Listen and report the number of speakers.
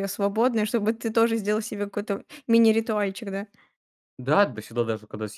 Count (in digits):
2